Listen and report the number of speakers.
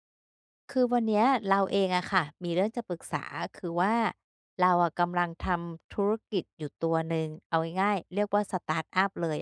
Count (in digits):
1